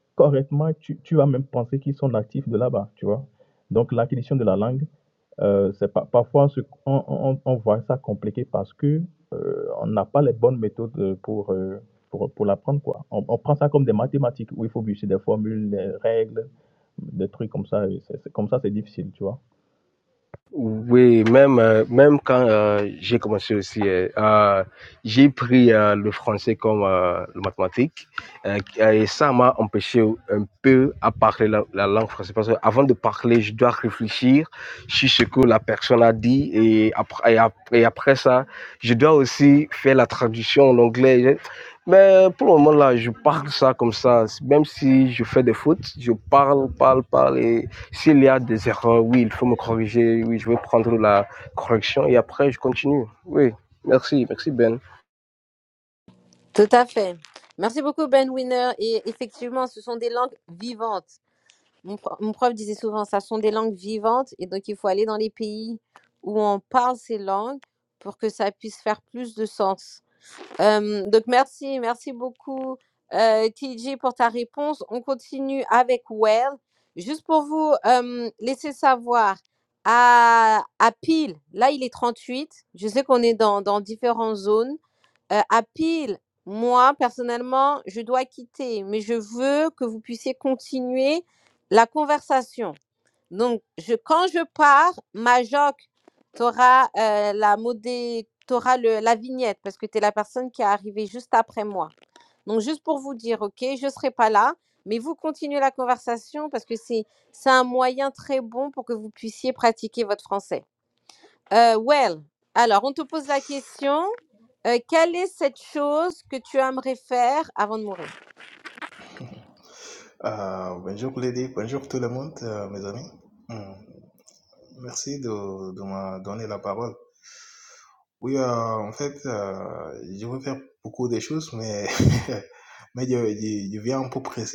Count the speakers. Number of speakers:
4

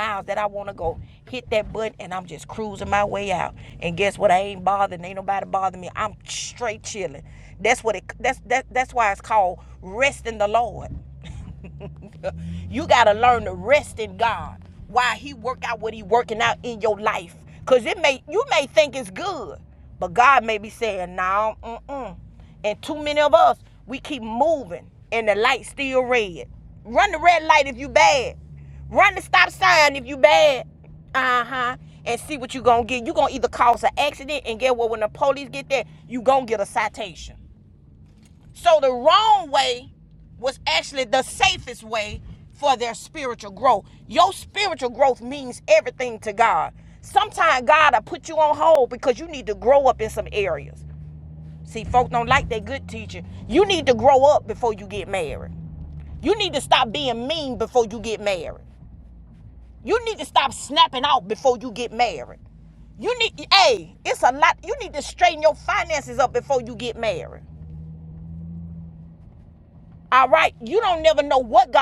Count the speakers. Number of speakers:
1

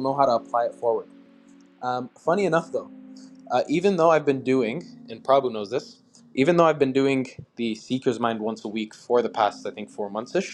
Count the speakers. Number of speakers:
1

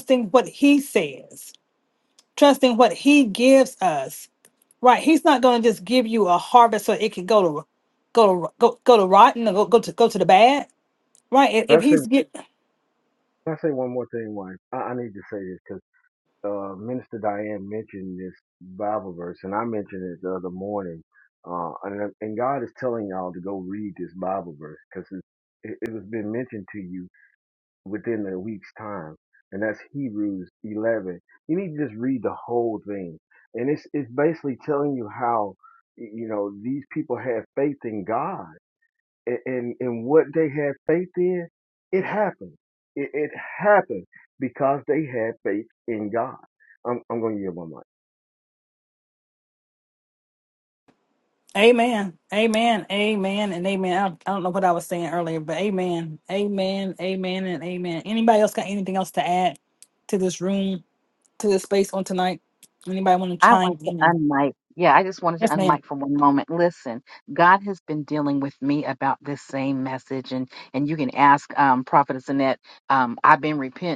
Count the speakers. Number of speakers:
3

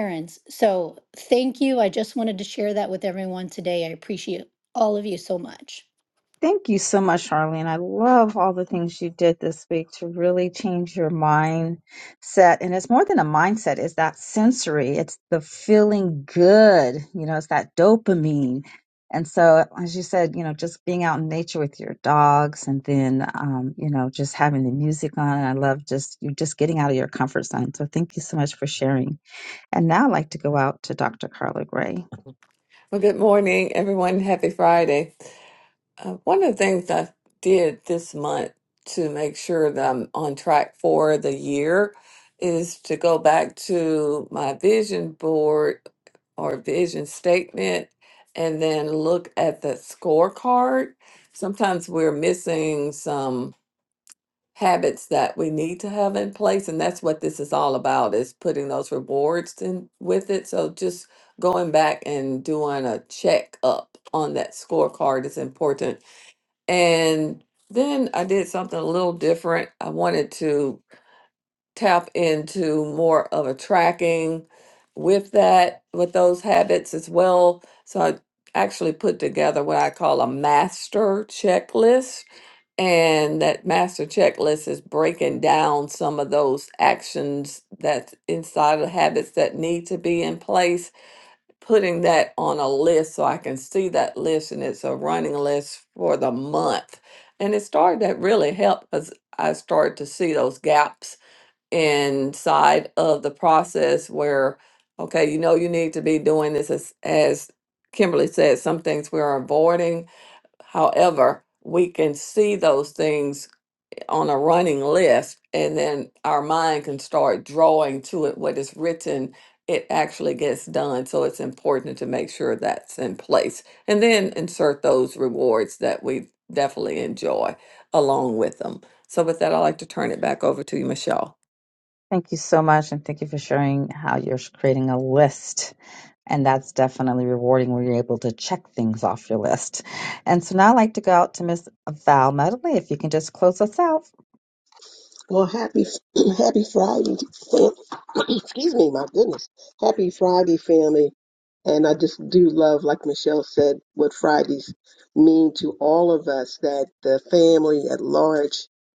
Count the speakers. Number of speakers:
4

